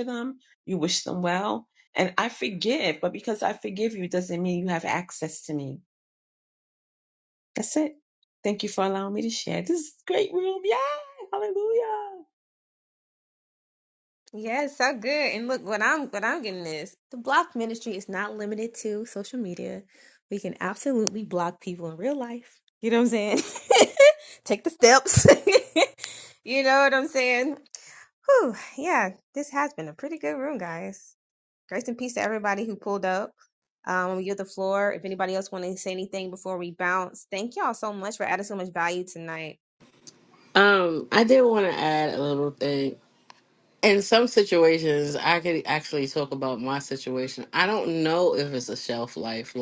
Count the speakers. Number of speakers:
3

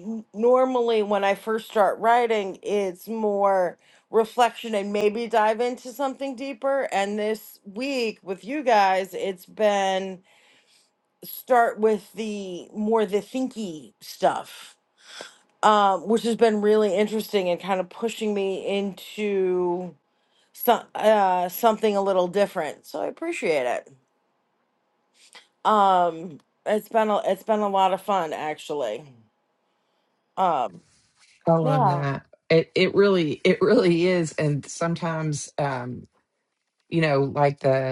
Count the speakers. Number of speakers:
2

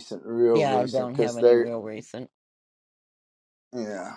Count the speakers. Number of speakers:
2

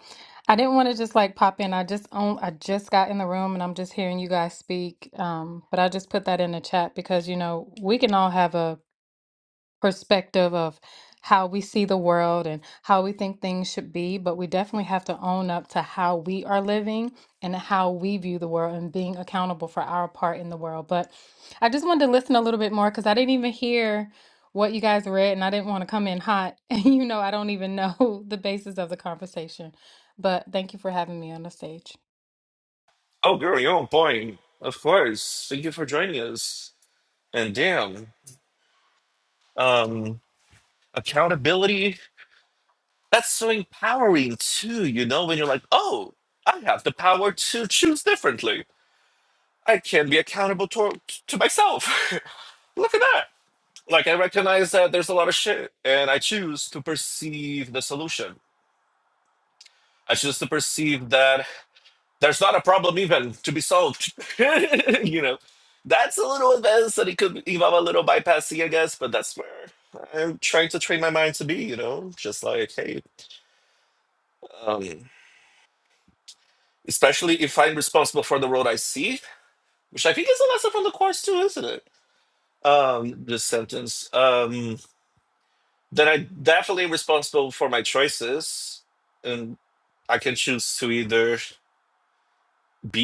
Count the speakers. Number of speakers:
2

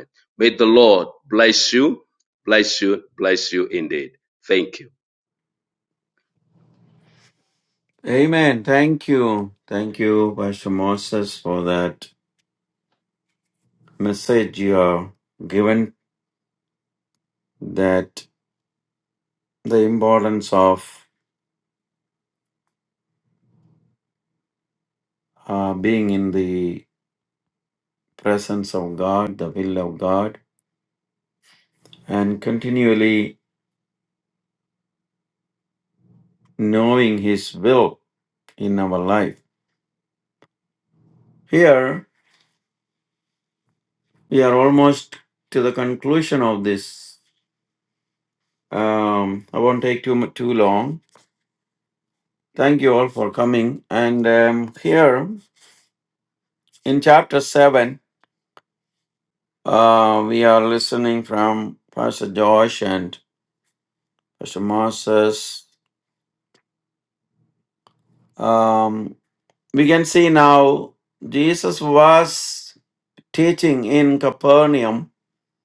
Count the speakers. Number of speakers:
2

